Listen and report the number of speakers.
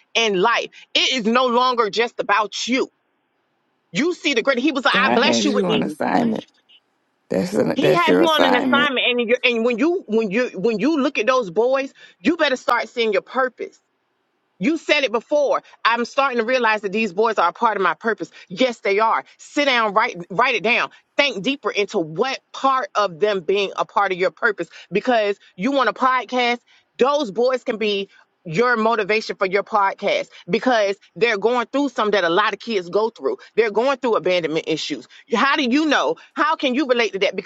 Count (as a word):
two